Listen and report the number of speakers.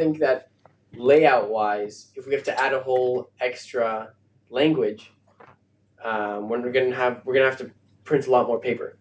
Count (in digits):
1